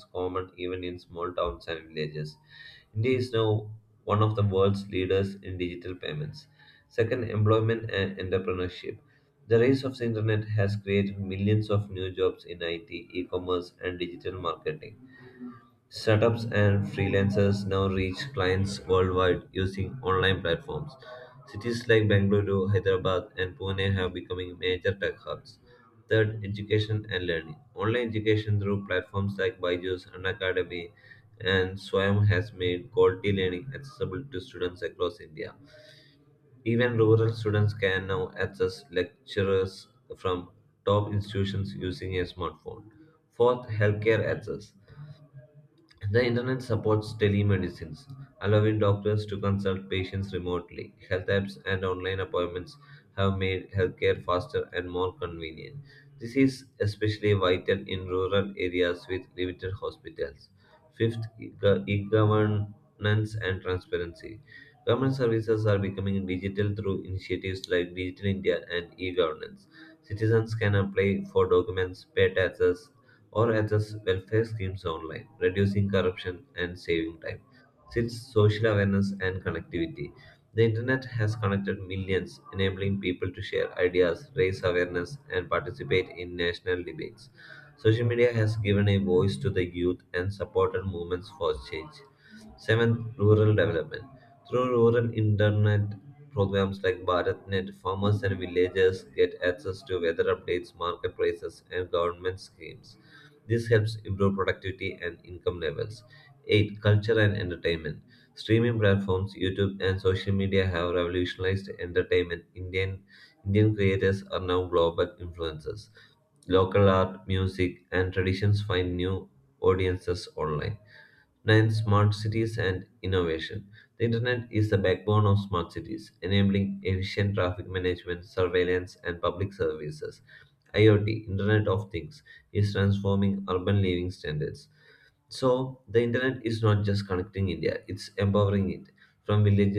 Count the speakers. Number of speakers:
one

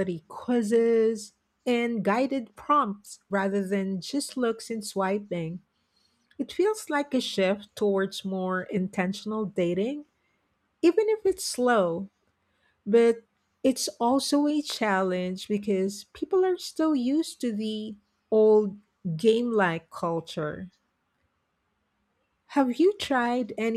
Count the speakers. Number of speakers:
one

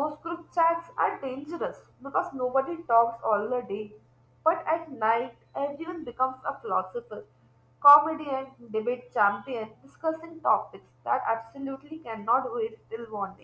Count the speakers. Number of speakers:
one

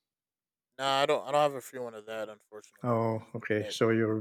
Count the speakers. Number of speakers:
two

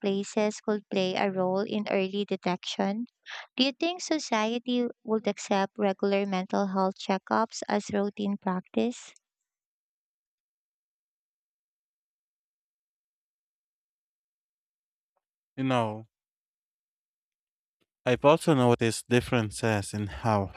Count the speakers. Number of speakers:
two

